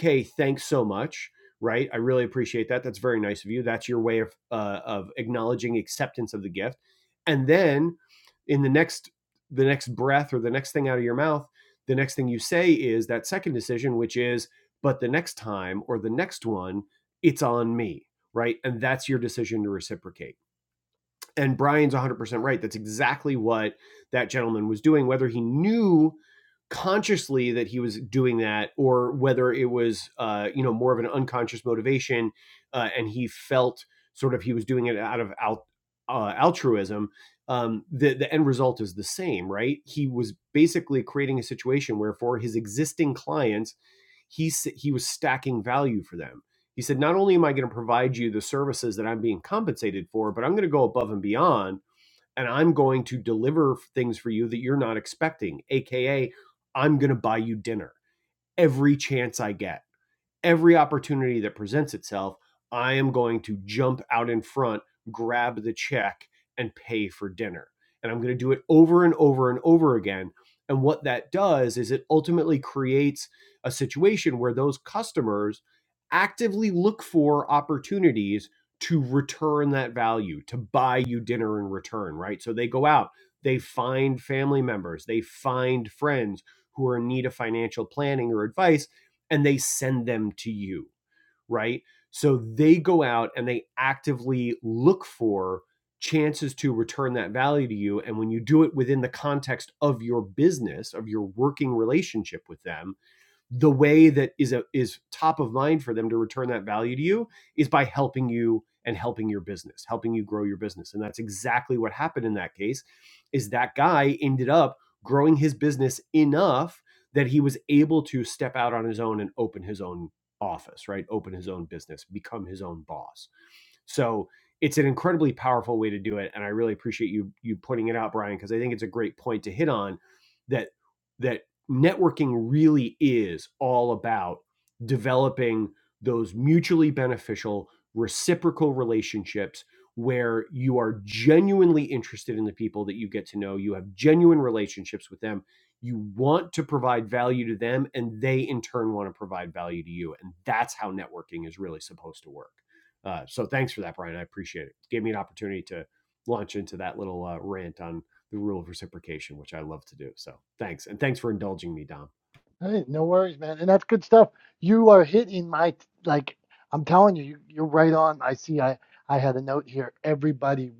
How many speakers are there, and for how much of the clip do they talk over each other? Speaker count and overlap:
two, no overlap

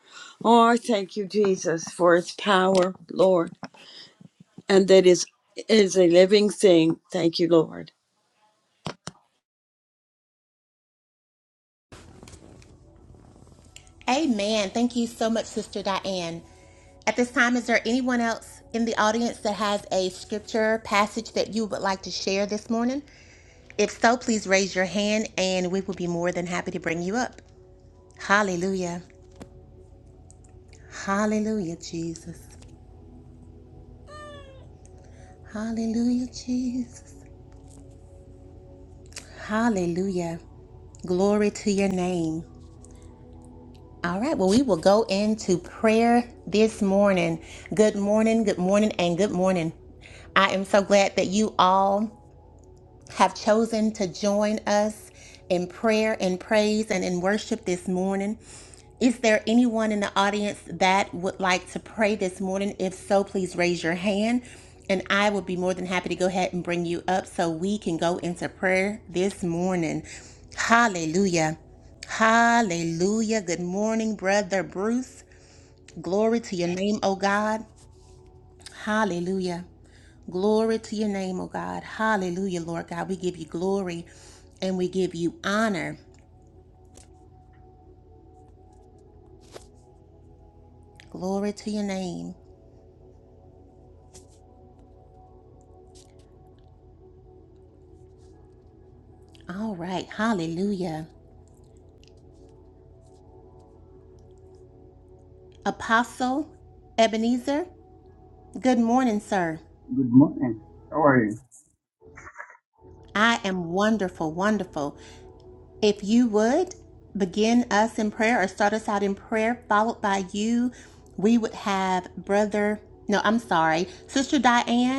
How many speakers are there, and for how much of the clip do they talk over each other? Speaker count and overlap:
three, no overlap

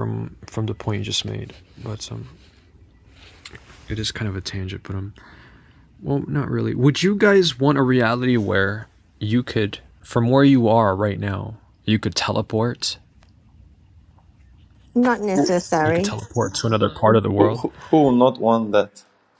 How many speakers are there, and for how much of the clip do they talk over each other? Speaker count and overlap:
three, about 2%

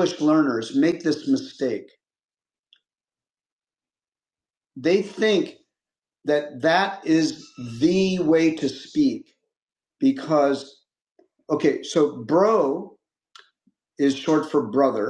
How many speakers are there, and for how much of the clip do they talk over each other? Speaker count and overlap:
one, no overlap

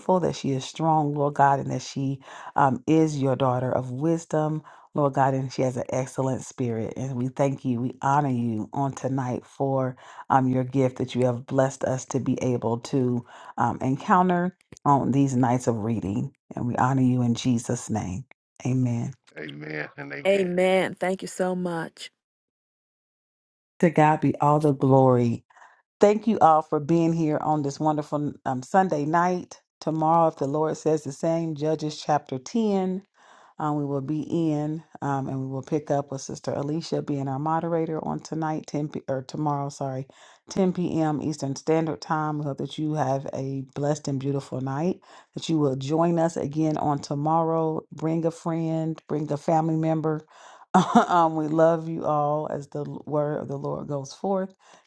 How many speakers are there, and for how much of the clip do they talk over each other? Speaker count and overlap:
three, about 1%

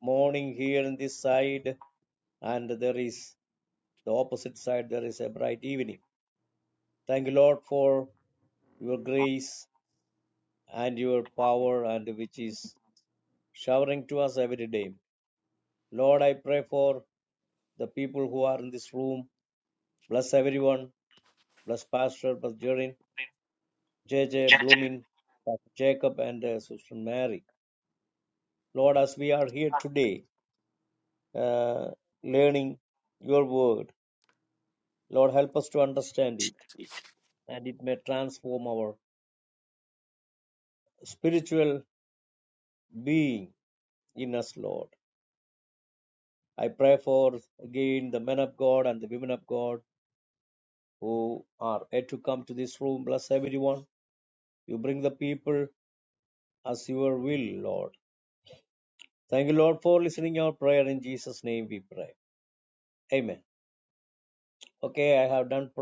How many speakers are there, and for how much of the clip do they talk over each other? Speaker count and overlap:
one, no overlap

